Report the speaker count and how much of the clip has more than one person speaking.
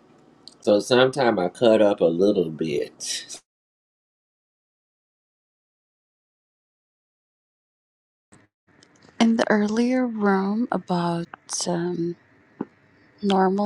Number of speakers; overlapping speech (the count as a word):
two, no overlap